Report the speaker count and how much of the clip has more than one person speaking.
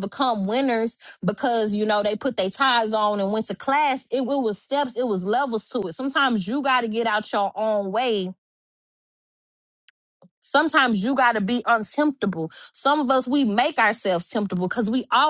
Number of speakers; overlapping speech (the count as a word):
one, no overlap